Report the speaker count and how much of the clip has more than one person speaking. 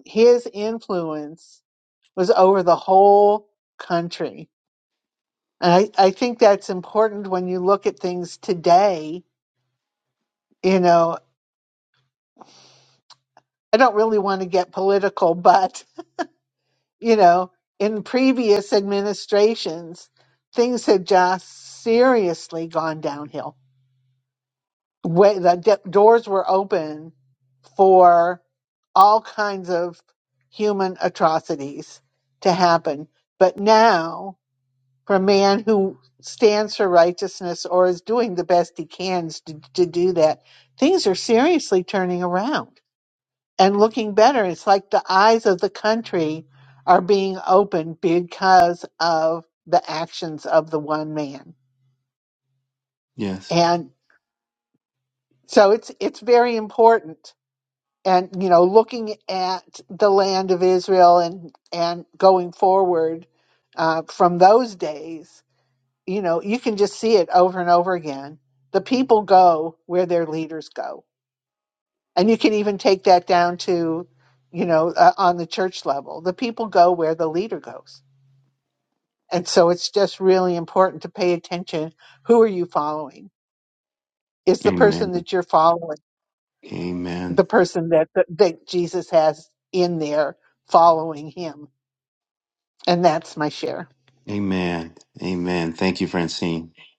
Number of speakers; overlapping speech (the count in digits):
2, about 1%